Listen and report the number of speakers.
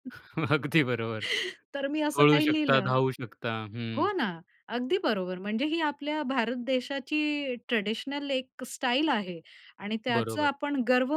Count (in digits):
2